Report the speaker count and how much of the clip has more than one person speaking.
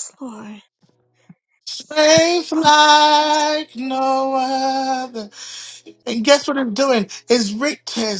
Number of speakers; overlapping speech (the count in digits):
2, about 11%